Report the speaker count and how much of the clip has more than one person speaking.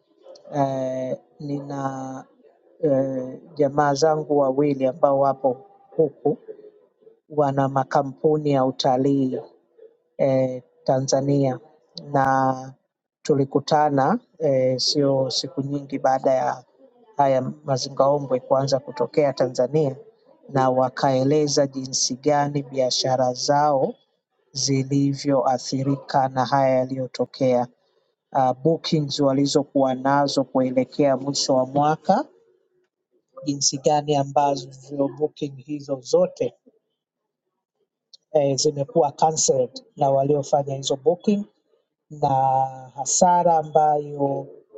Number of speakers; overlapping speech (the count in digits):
1, no overlap